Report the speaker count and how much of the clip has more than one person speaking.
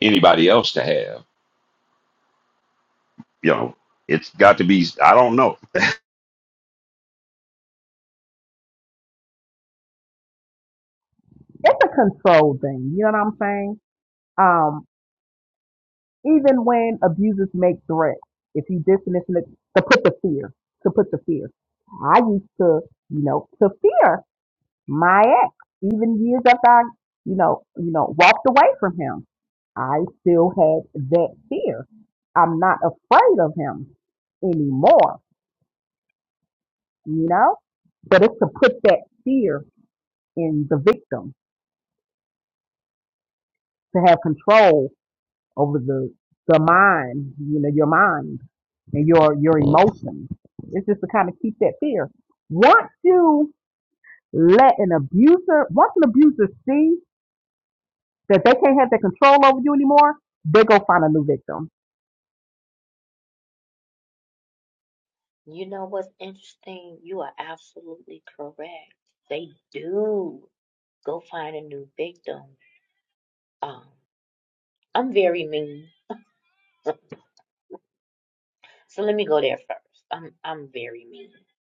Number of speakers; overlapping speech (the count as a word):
three, no overlap